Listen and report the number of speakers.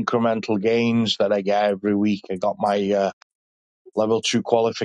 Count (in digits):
1